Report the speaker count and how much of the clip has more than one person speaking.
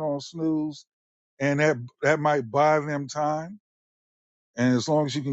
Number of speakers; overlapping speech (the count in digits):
1, no overlap